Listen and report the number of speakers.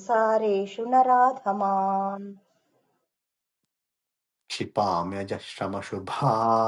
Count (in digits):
2